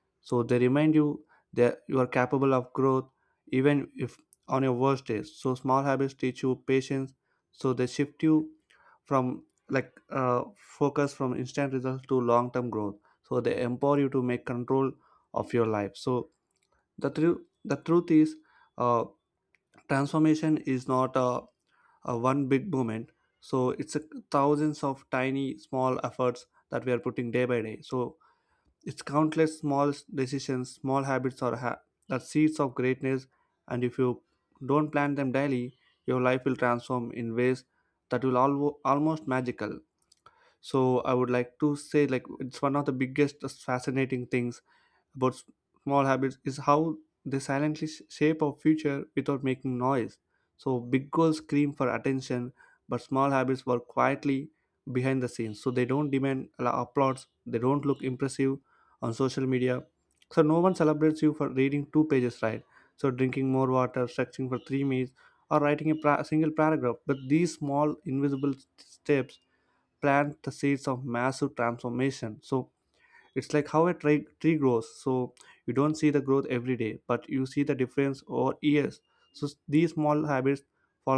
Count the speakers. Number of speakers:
one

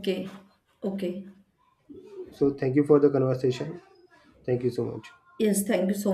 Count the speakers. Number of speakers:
two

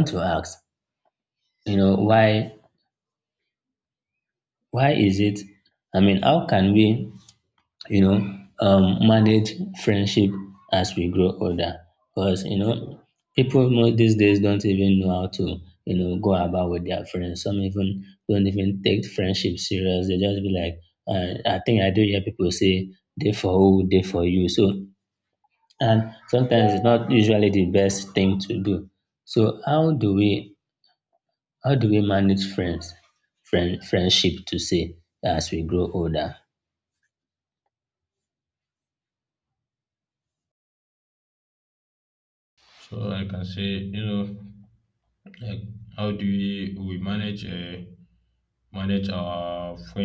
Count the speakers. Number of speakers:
two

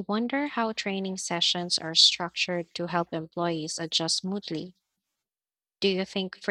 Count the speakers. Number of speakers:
one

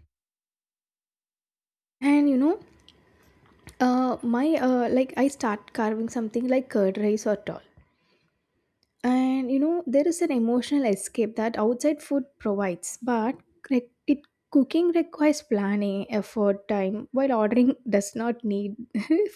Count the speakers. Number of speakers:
one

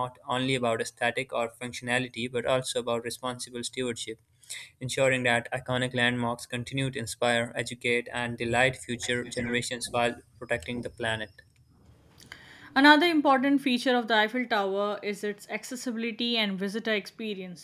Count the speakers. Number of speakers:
two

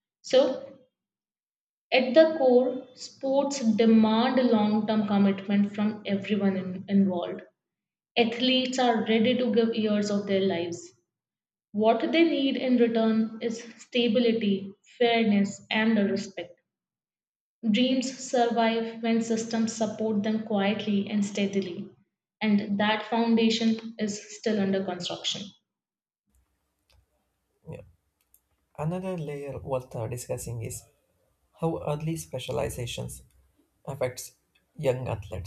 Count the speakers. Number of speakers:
two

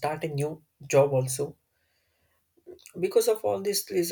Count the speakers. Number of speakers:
one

